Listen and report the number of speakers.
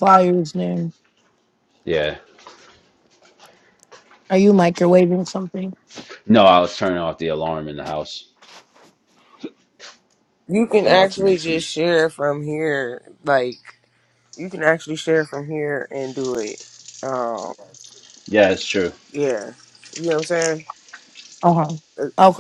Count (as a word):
three